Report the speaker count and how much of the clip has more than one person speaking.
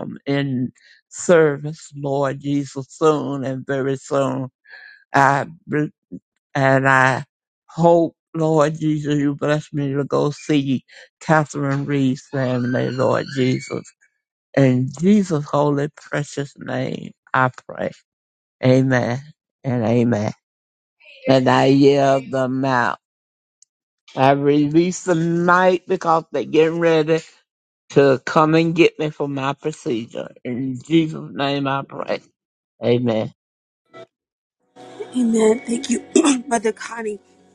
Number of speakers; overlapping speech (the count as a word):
two, no overlap